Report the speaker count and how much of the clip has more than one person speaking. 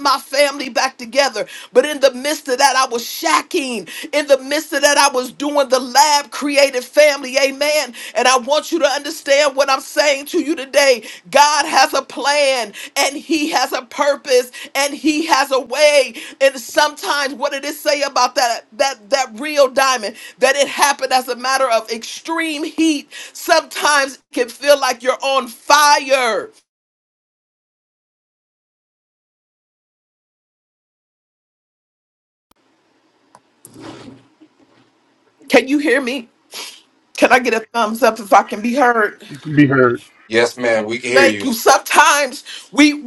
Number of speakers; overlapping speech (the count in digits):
2, about 1%